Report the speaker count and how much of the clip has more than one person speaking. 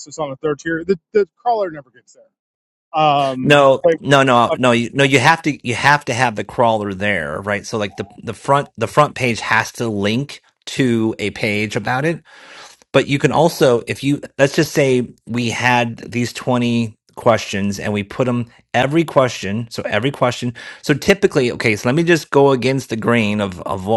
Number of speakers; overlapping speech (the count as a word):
two, about 3%